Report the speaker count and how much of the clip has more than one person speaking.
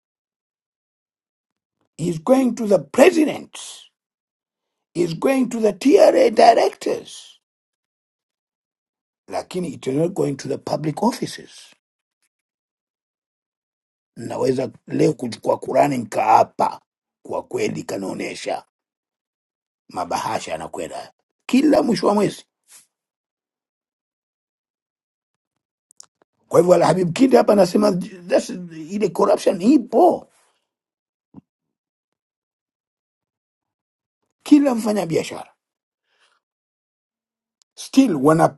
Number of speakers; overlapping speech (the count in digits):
1, no overlap